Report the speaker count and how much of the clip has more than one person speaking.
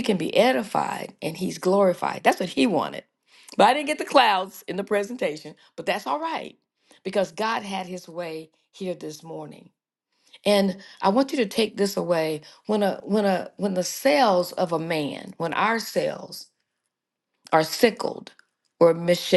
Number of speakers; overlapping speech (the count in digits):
1, no overlap